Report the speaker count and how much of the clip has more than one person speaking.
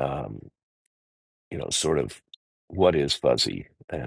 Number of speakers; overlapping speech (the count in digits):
1, no overlap